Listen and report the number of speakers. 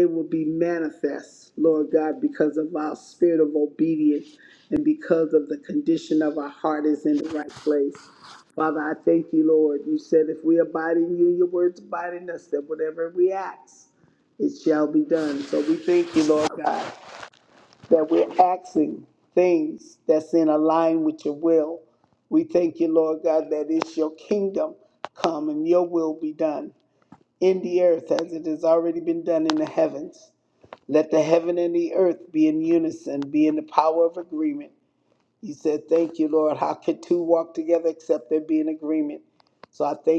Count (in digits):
1